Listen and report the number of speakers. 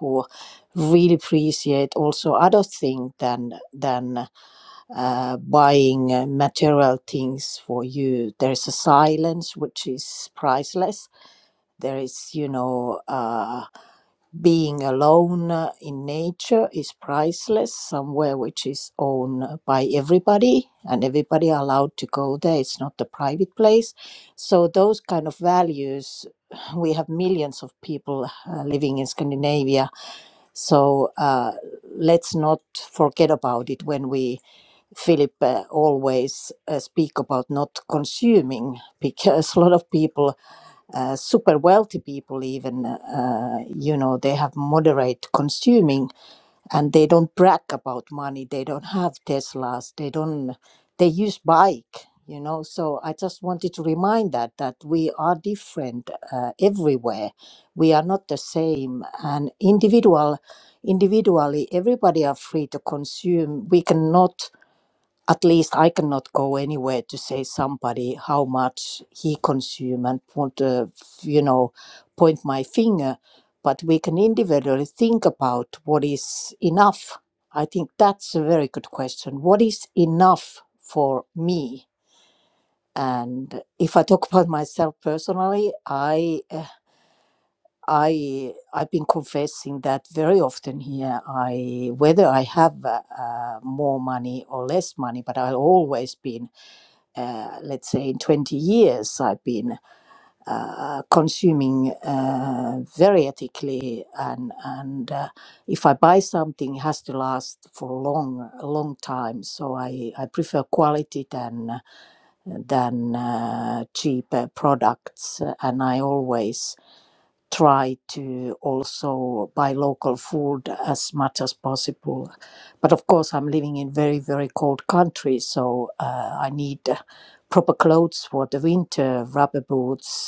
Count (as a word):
one